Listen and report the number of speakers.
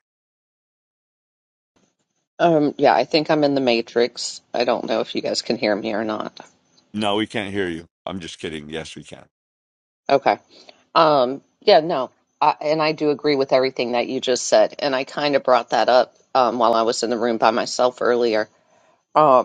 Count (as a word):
two